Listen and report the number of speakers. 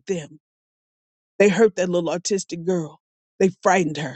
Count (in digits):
1